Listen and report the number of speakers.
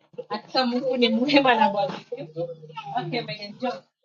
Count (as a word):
one